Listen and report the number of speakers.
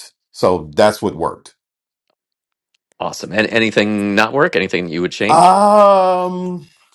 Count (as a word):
two